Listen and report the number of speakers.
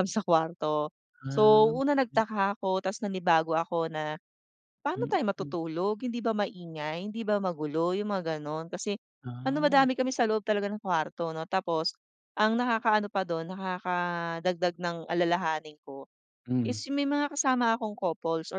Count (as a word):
two